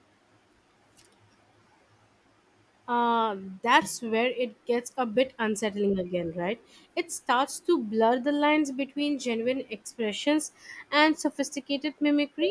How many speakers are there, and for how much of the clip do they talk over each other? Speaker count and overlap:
1, no overlap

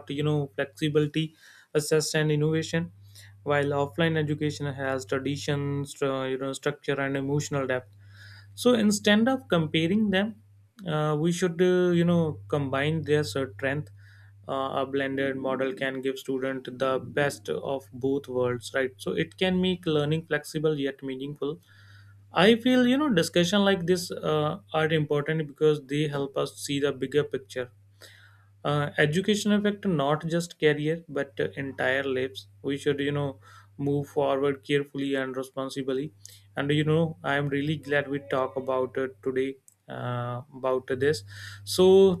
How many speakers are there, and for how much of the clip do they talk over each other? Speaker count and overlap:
1, no overlap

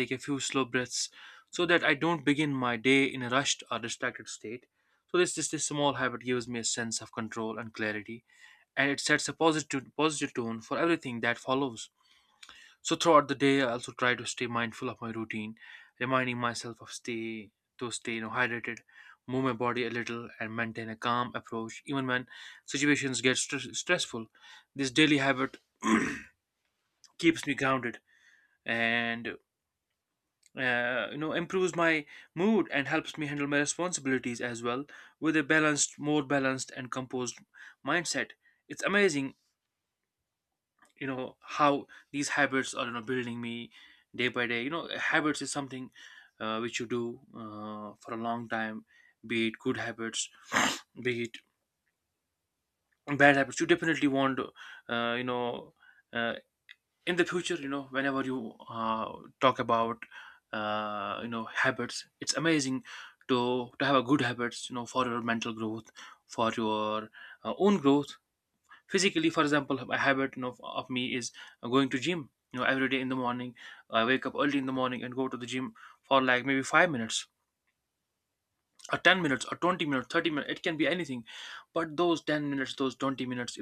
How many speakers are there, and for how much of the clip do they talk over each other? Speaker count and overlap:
1, no overlap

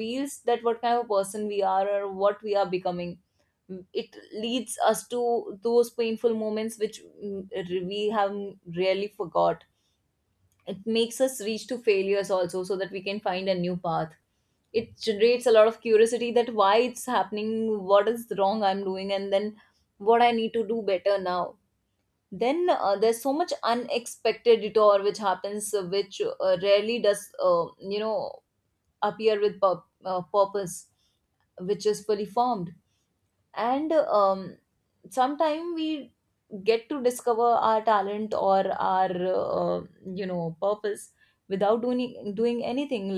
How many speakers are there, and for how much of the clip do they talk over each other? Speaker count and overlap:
1, no overlap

